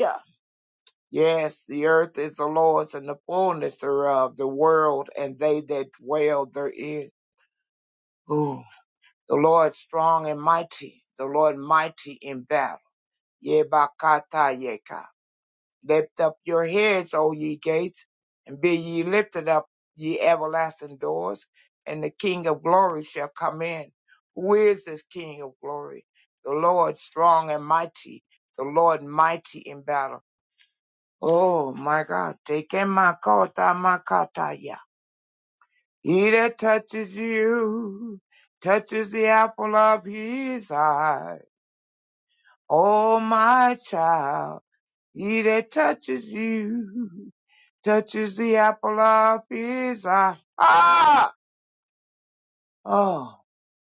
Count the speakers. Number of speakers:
1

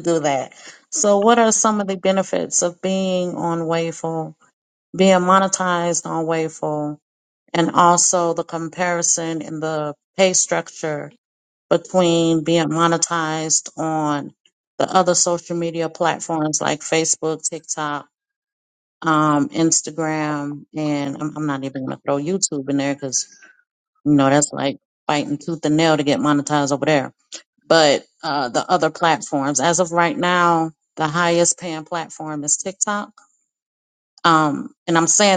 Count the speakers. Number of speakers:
1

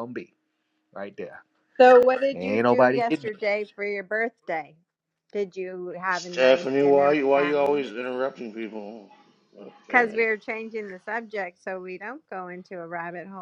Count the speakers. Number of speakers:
3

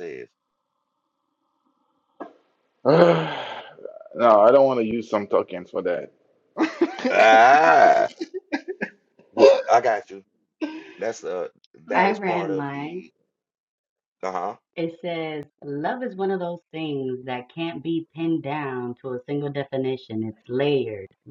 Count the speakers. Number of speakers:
3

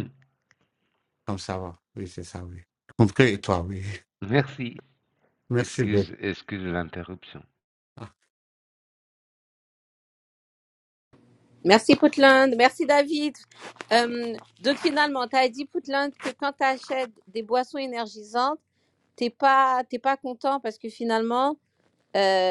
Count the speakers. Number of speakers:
3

